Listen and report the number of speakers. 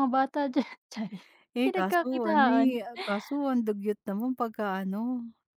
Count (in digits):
2